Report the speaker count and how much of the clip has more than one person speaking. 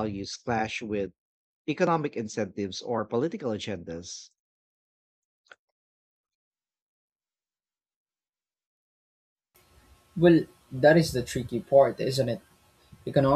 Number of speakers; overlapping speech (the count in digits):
2, no overlap